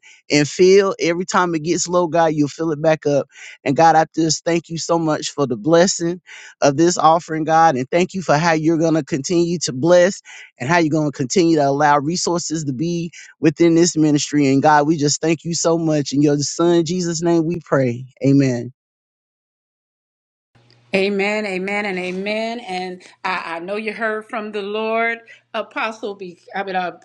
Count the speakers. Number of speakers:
2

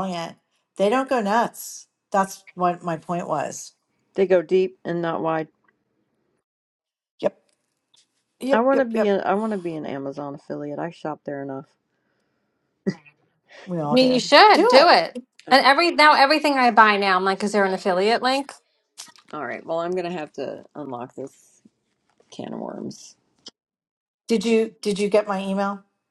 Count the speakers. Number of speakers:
3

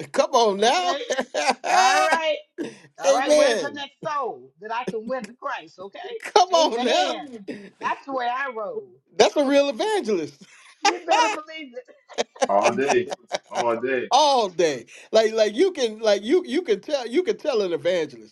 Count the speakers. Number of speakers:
3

